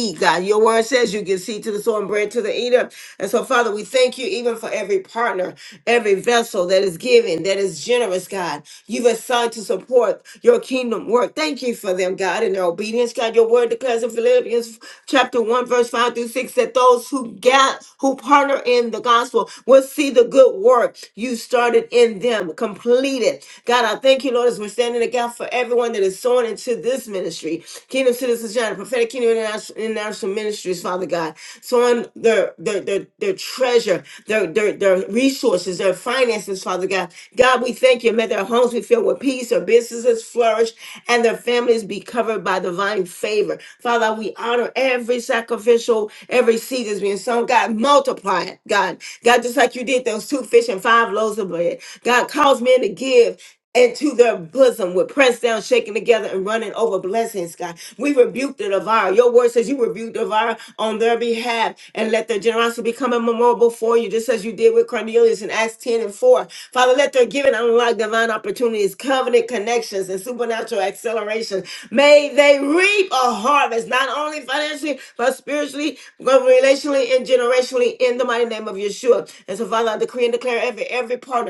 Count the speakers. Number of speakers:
1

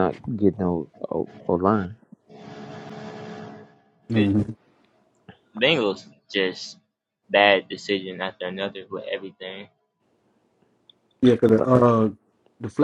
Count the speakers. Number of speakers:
3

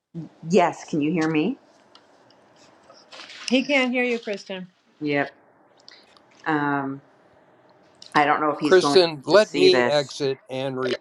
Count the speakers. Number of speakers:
3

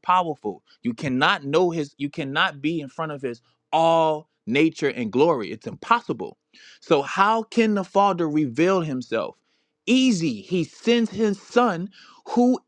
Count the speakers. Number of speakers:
1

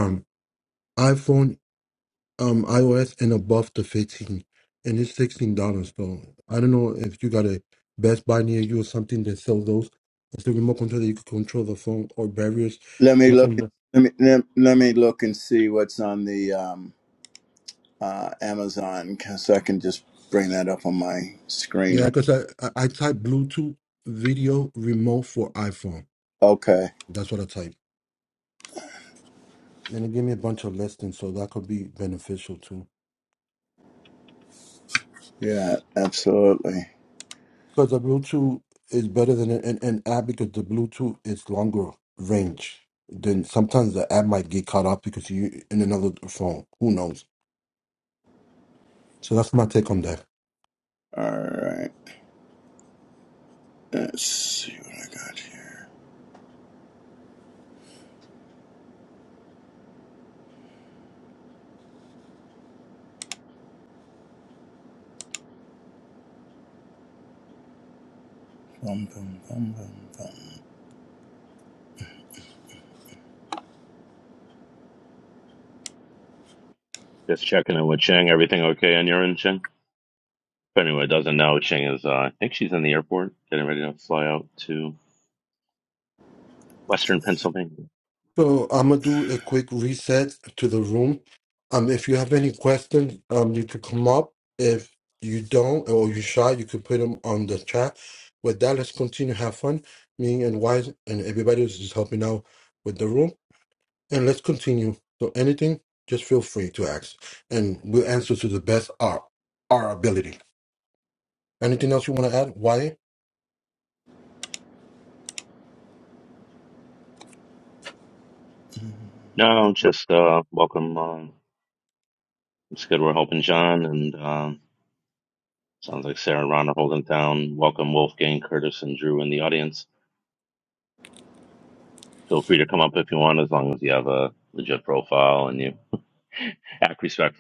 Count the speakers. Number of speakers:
3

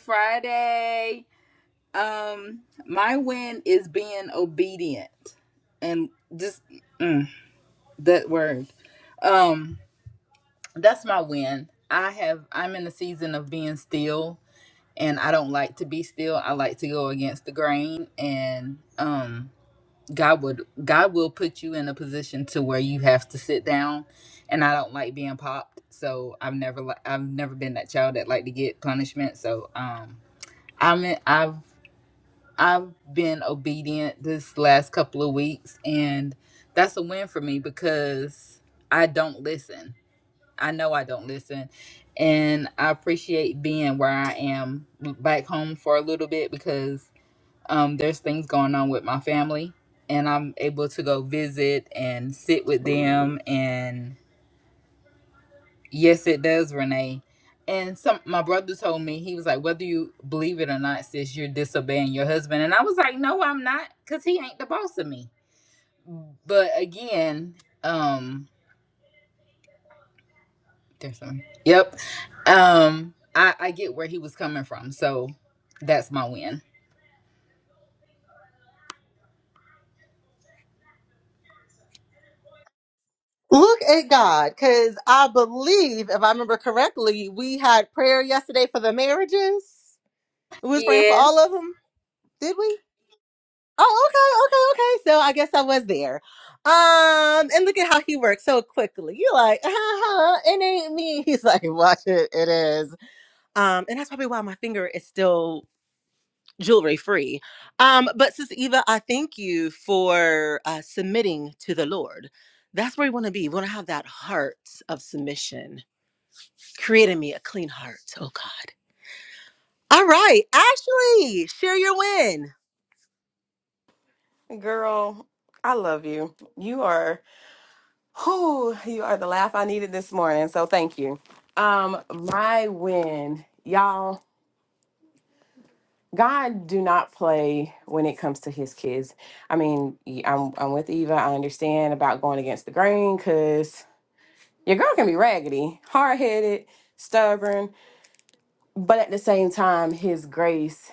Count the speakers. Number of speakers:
3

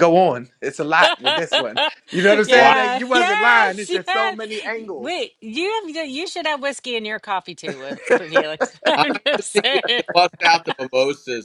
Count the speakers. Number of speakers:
3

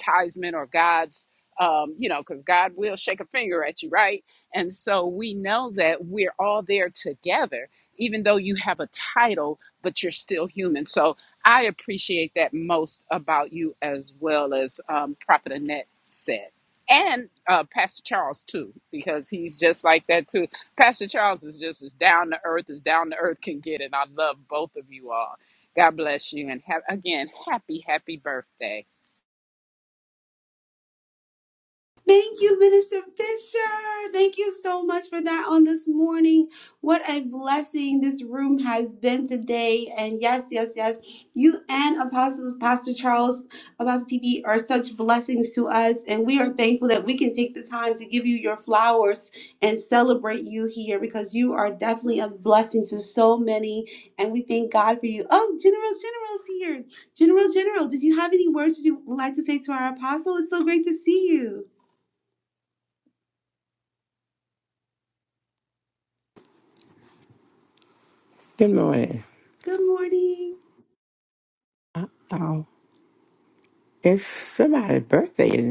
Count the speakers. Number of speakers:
3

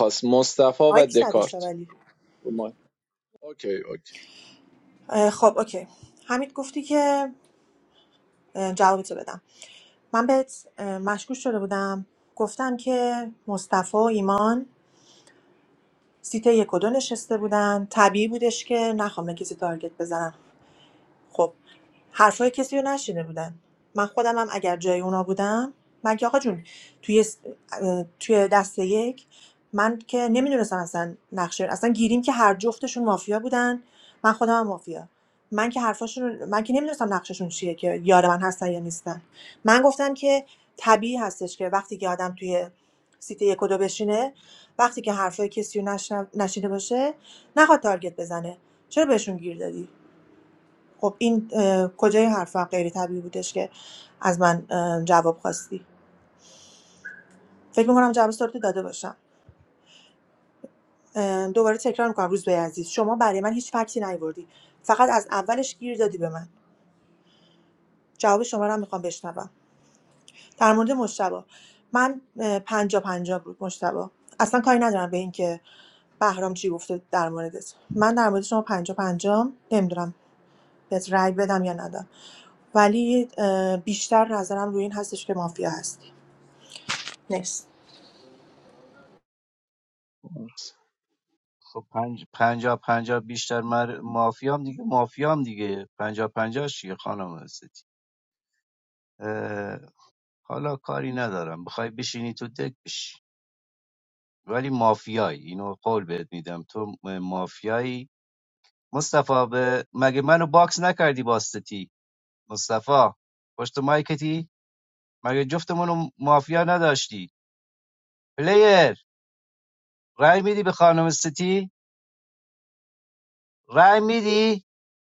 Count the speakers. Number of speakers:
3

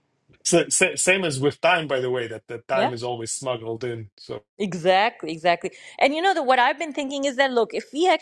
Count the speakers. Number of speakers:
2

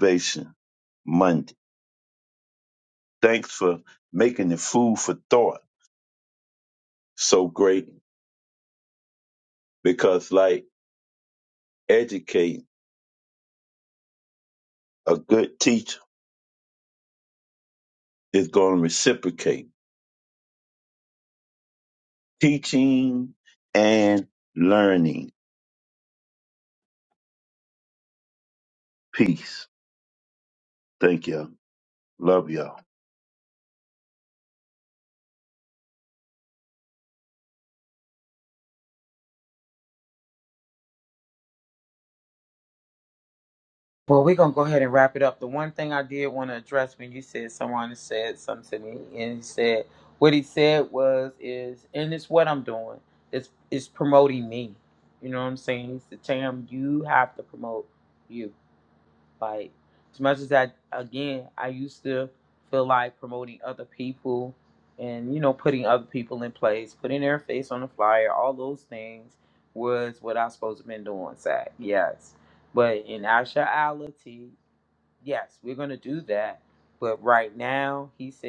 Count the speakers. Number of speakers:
2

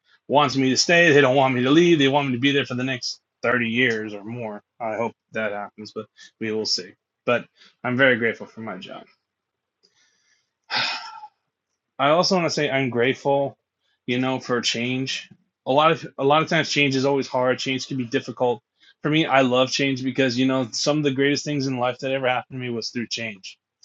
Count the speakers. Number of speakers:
1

